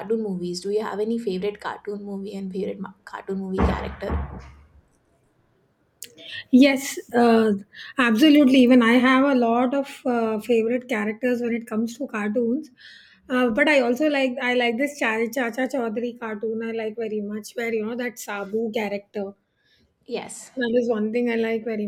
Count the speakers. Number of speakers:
2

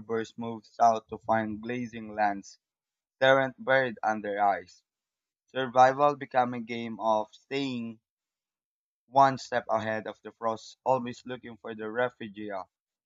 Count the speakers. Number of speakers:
1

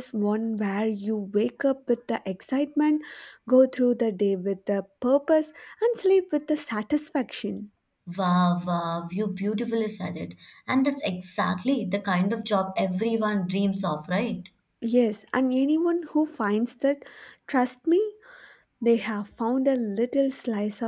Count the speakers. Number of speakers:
2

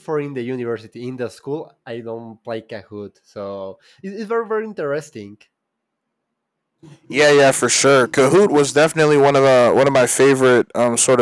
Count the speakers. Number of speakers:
2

